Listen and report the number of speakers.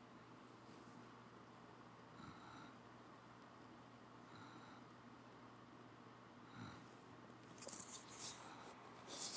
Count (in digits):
0